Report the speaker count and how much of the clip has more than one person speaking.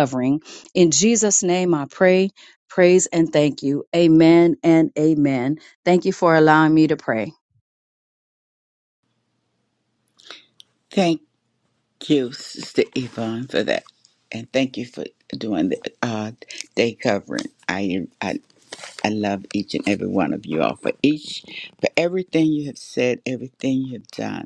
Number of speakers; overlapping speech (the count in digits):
2, no overlap